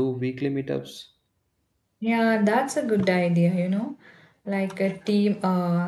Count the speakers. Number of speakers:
2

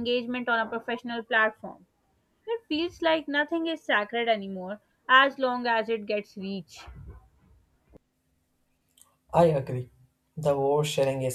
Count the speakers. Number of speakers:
2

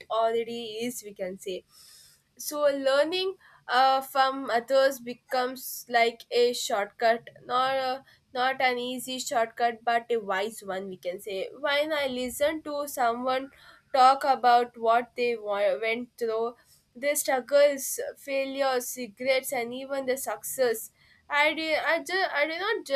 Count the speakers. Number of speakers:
1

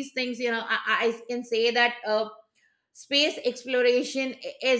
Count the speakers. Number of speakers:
1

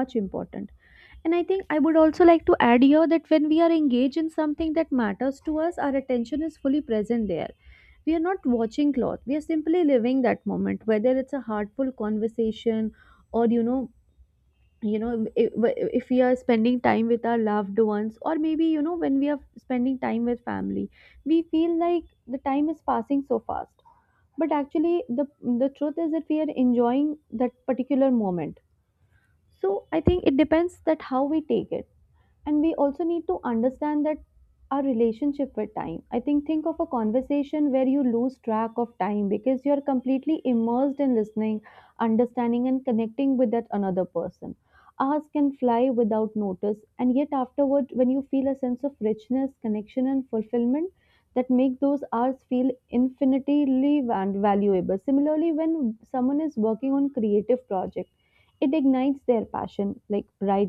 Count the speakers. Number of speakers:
1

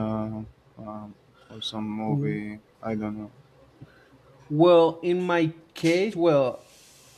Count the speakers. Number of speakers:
2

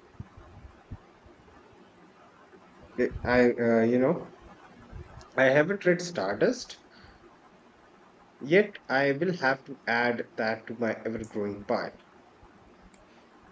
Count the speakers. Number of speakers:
1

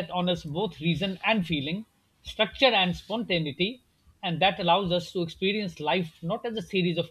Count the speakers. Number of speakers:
1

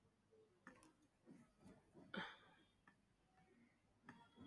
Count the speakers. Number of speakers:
0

